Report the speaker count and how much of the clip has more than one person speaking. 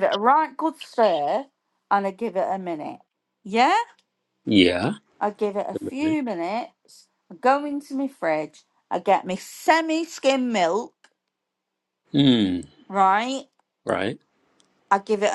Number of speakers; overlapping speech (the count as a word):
two, no overlap